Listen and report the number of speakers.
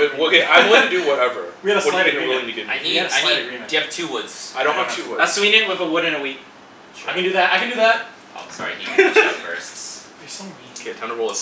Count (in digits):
4